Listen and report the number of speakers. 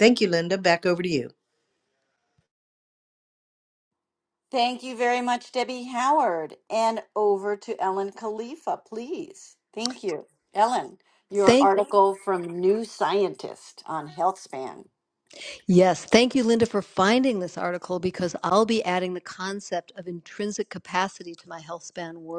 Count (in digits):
3